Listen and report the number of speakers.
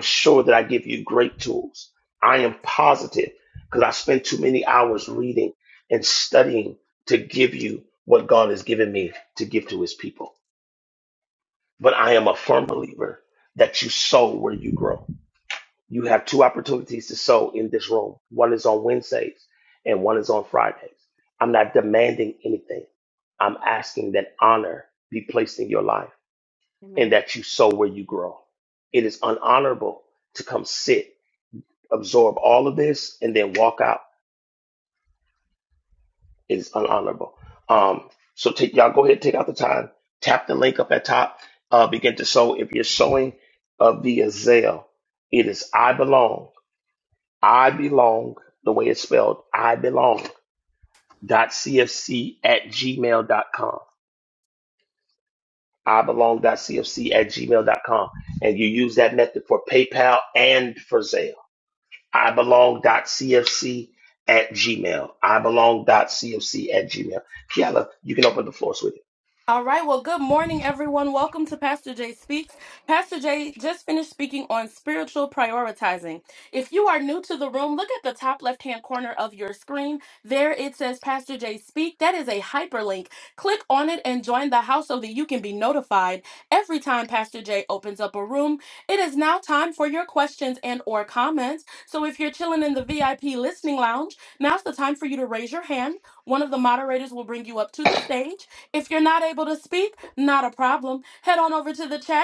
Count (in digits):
2